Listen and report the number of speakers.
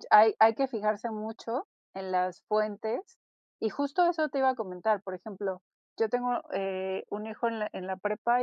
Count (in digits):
1